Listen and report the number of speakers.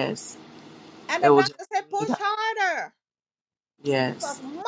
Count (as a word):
two